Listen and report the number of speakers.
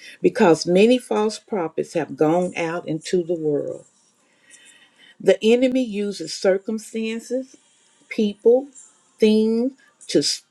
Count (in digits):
1